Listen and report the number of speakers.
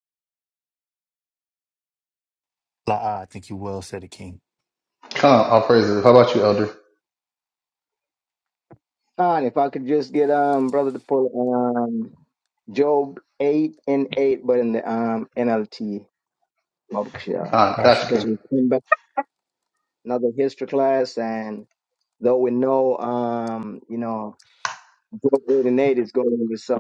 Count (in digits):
3